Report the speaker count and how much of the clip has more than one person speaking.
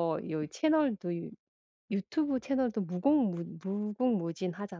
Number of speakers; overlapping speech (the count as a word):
one, no overlap